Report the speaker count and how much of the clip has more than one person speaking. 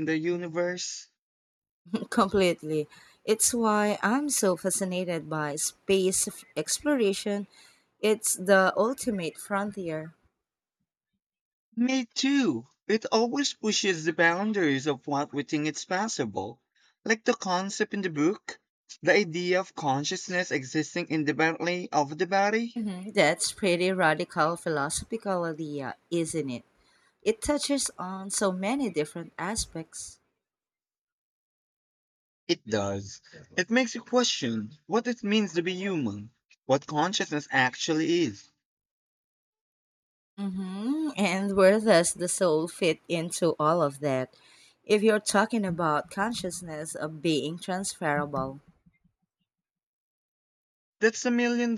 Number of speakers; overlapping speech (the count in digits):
2, no overlap